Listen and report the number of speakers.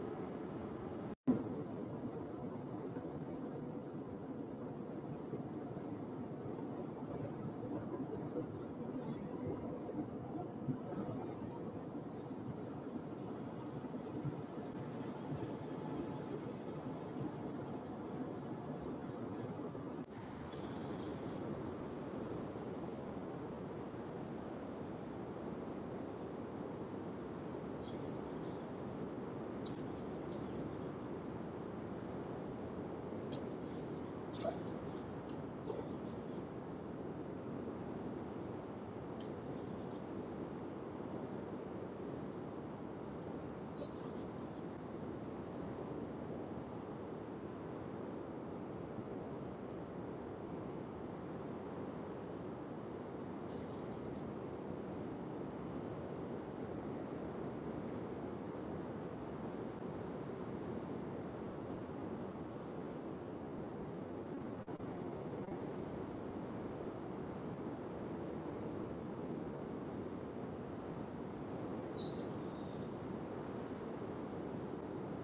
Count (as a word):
zero